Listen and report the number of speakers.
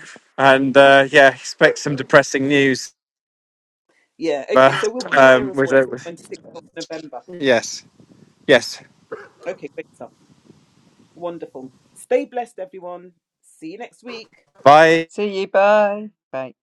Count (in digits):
3